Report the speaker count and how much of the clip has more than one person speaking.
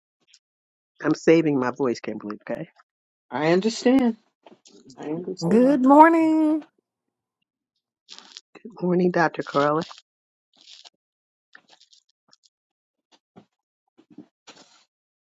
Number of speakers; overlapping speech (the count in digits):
3, about 2%